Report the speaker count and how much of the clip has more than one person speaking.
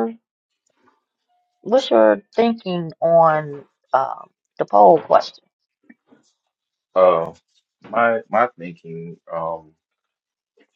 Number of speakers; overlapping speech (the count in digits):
2, no overlap